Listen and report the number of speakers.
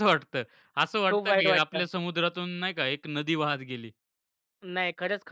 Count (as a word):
two